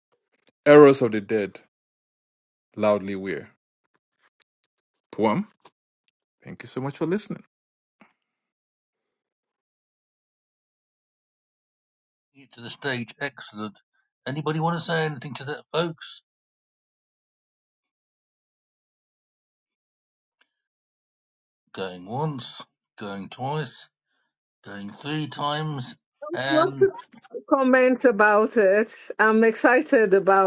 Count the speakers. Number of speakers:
three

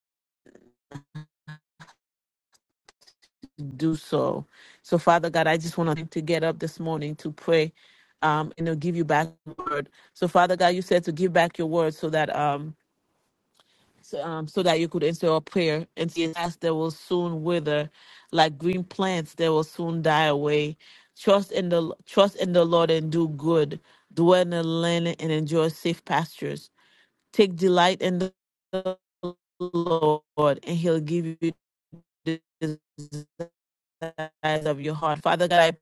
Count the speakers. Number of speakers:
one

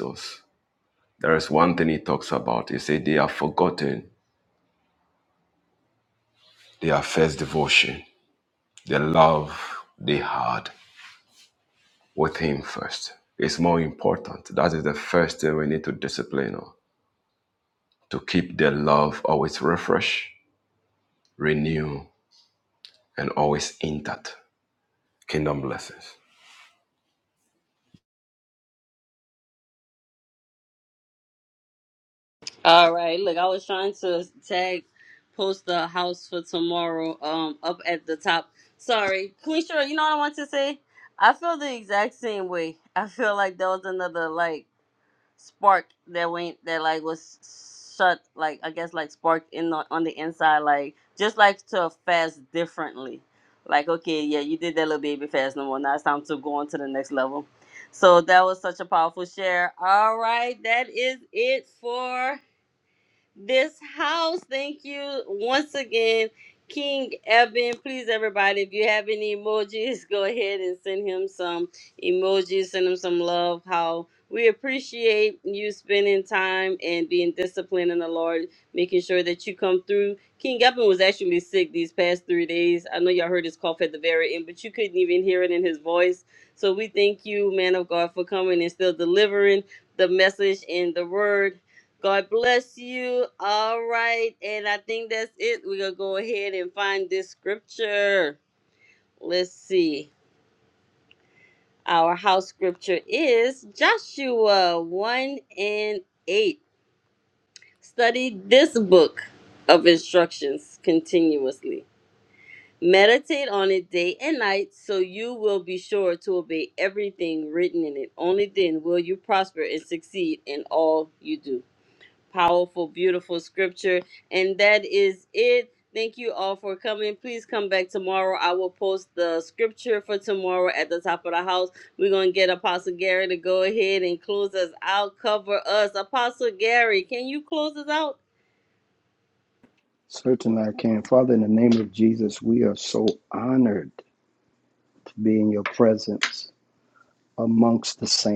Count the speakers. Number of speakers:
three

